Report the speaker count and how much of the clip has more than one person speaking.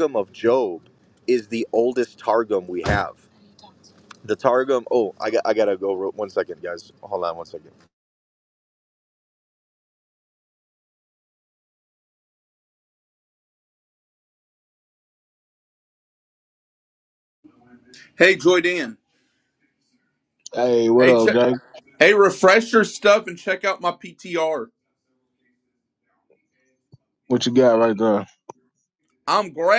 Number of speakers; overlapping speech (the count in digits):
3, about 1%